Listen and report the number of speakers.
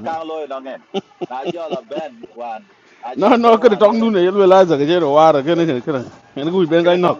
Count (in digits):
2